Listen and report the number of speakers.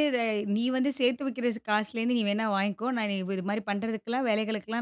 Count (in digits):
1